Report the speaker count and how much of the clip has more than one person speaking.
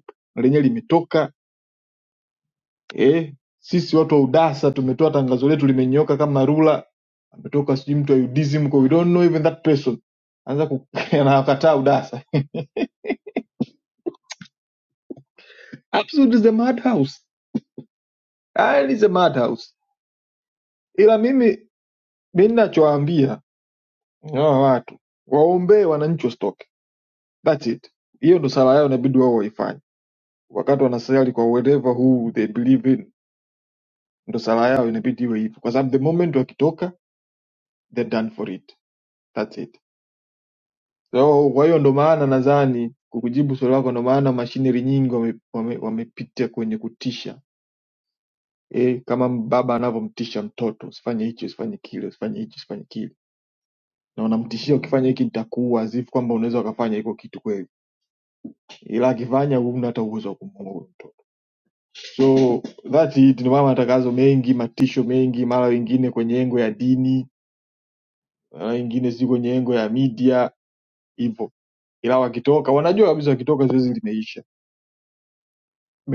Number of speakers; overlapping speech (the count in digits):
1, no overlap